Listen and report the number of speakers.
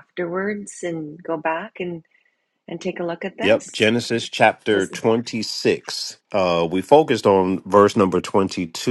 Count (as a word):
two